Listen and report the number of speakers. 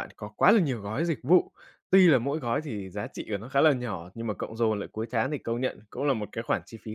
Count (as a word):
one